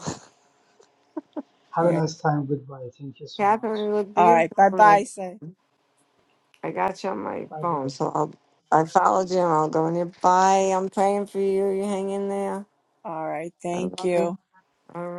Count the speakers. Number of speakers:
three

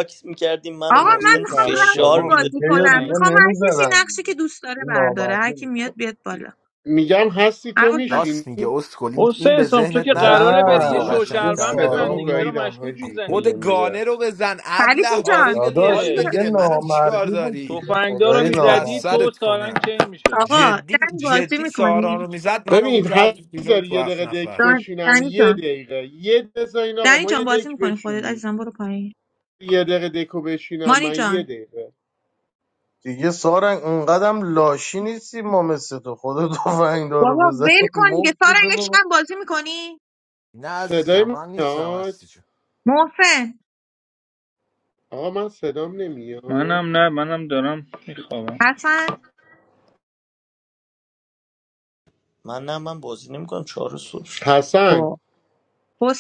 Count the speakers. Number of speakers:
six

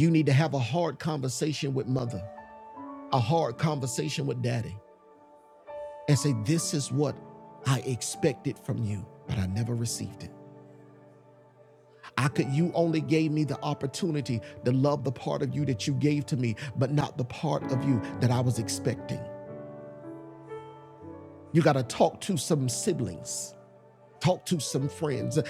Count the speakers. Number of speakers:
one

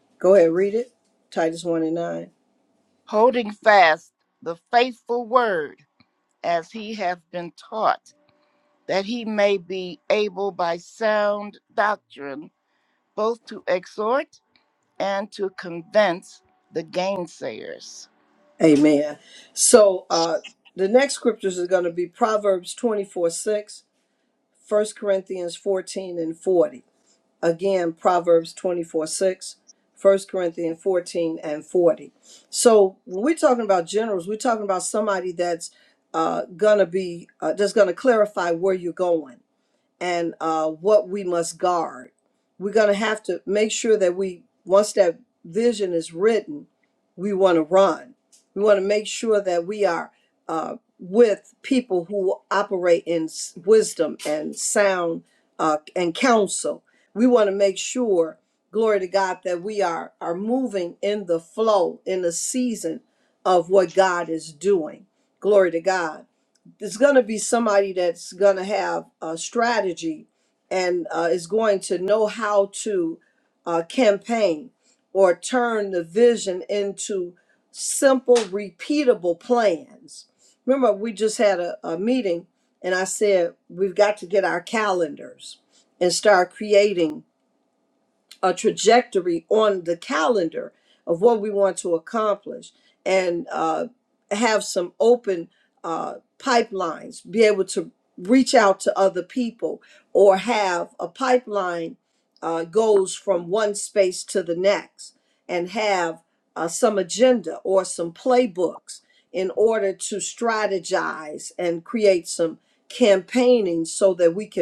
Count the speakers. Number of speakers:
two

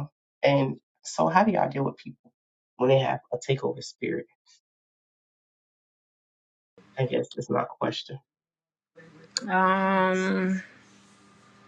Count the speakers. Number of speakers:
two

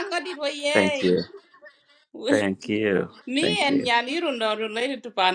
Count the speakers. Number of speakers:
two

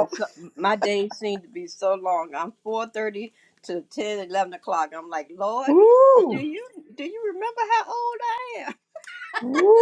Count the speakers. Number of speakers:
two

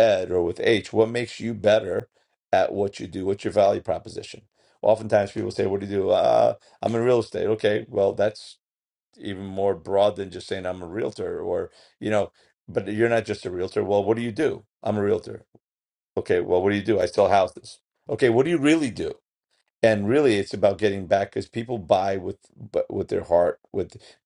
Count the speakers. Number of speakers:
one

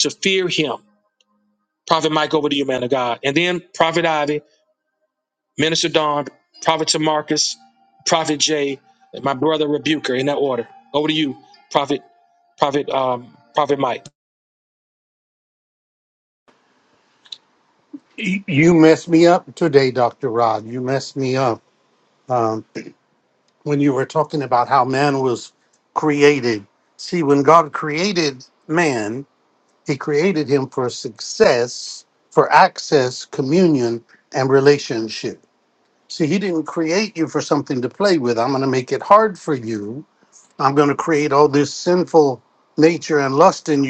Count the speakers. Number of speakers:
two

